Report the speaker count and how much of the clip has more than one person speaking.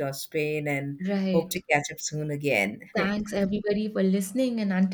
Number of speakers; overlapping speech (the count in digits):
2, about 5%